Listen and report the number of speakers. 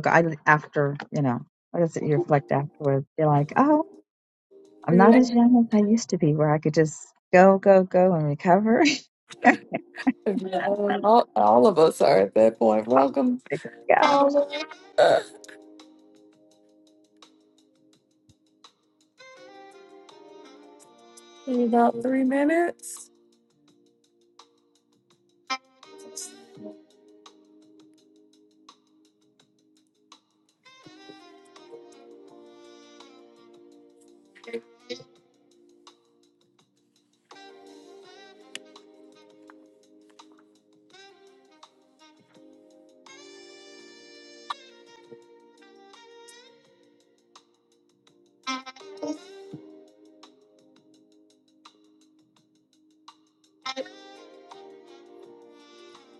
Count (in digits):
2